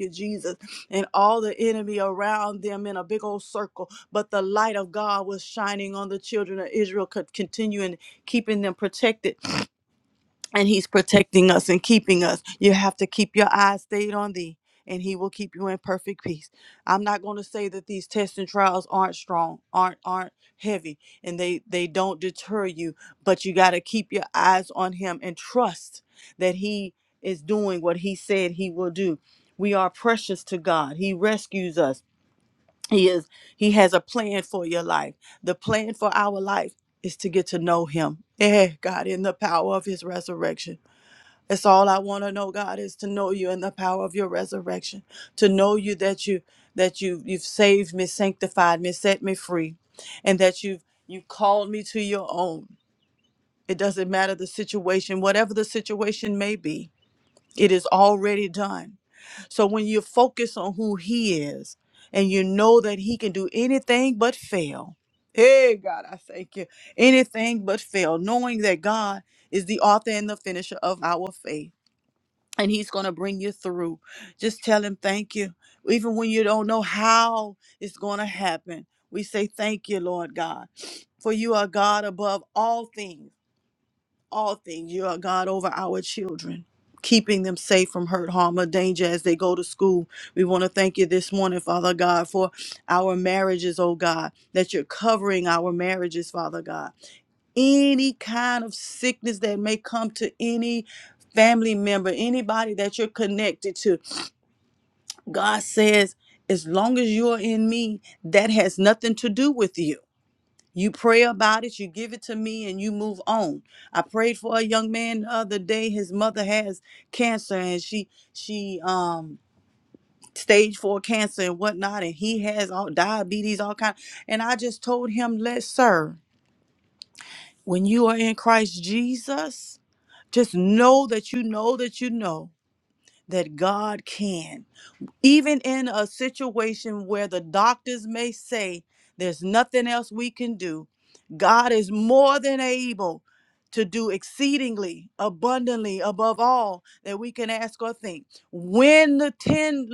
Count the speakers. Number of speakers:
1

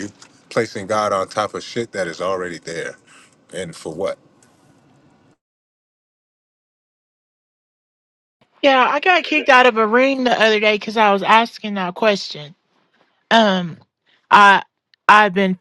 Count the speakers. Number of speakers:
2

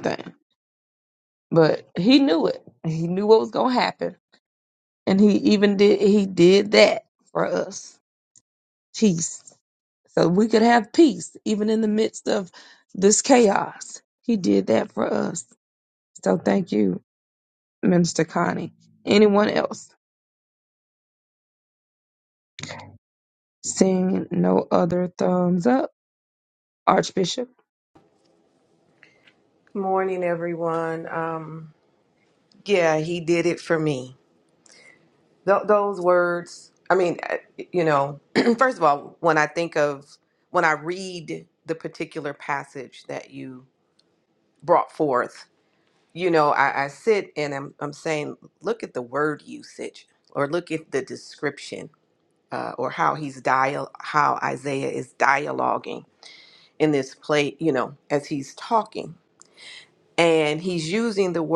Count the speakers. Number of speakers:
2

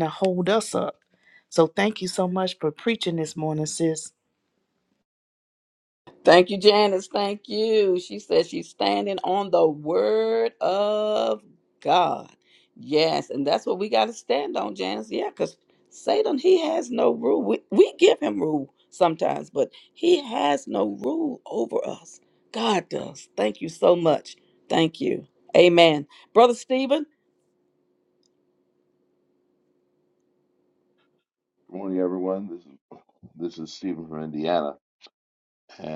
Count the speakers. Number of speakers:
3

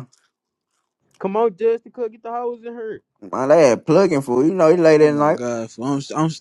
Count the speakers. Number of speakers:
3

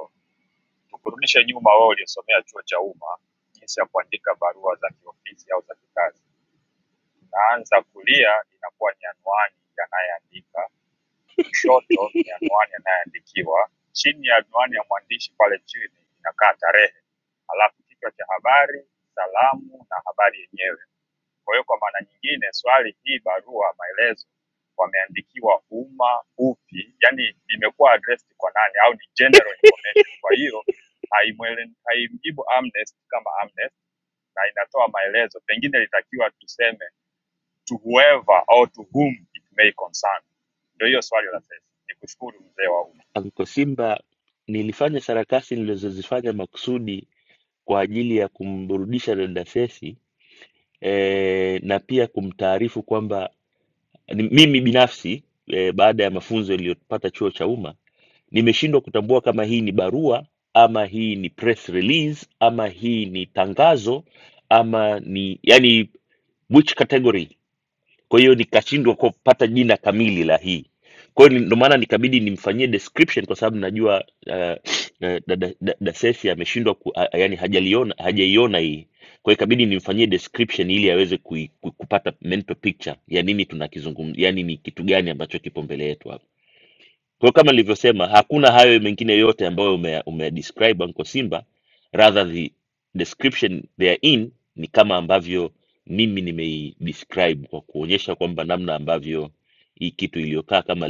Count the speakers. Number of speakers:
2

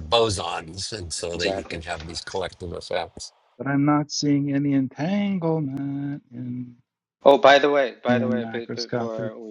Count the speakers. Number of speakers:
3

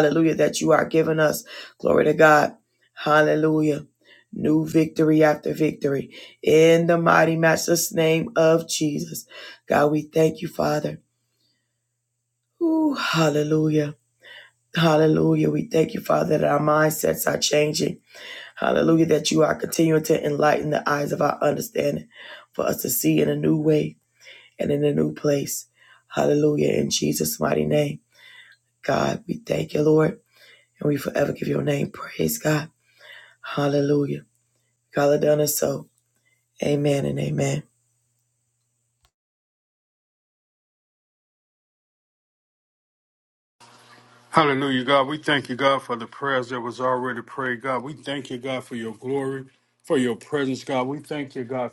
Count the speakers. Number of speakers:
2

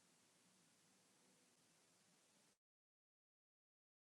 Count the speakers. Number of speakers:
0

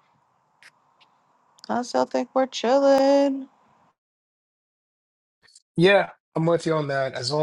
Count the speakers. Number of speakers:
2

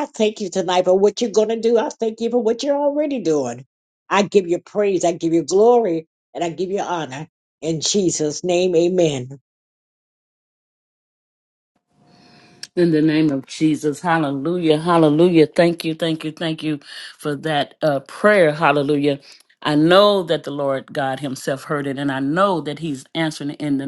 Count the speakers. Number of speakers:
2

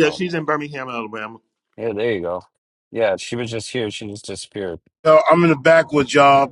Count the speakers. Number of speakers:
3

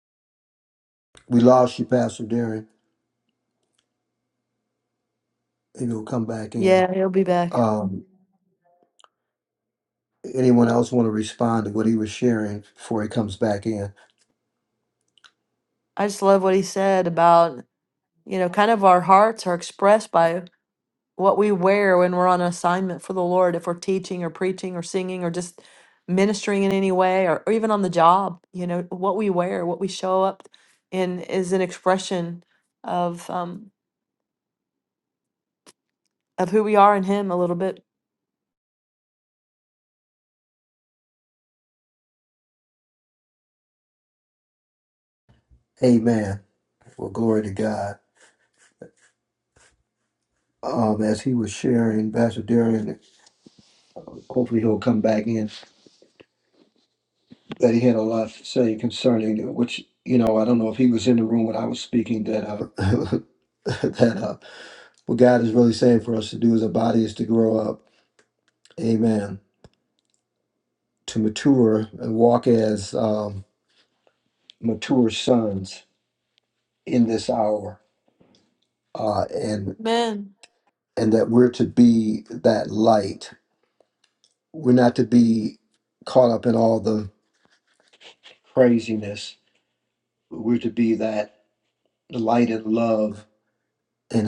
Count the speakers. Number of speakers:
2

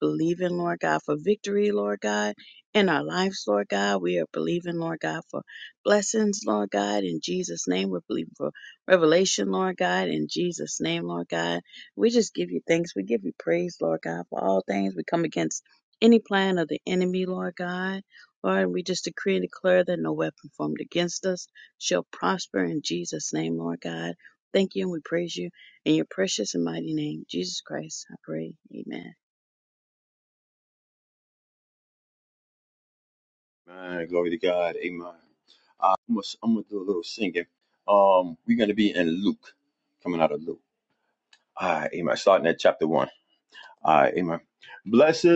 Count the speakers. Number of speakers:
2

